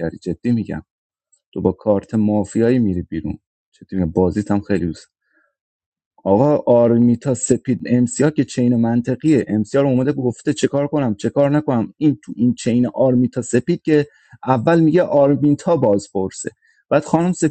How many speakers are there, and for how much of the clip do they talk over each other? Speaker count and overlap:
one, no overlap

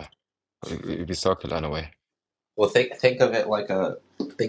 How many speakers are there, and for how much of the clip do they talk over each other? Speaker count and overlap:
two, no overlap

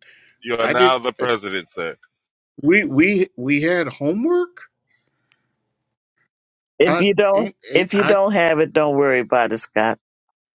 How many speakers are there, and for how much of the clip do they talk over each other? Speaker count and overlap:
three, about 16%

